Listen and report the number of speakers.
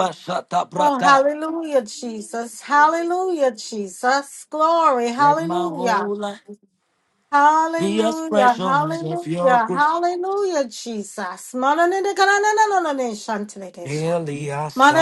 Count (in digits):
2